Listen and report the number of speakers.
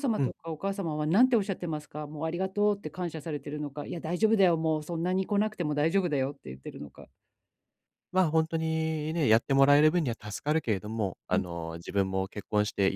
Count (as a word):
two